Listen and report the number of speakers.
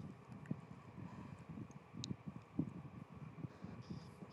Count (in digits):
0